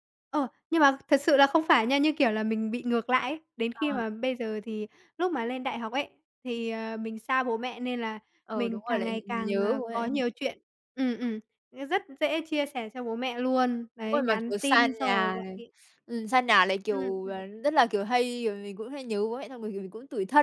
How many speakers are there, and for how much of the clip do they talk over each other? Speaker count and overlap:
2, about 19%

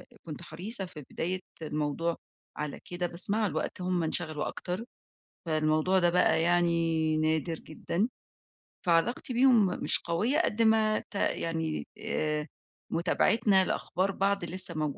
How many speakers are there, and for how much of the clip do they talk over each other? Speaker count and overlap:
1, no overlap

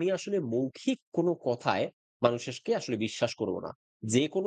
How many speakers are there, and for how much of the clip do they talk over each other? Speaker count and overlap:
1, no overlap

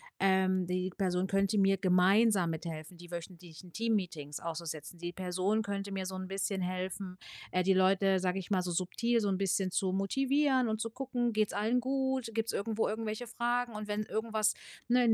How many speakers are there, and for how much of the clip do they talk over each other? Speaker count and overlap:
1, no overlap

